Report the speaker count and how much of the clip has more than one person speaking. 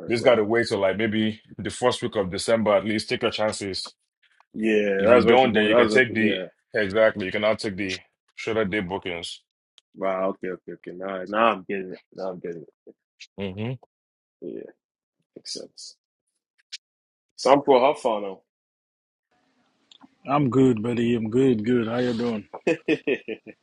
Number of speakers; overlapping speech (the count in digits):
3, about 7%